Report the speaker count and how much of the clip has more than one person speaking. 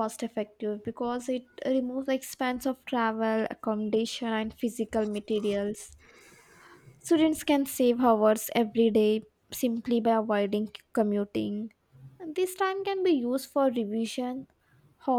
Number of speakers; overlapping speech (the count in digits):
1, no overlap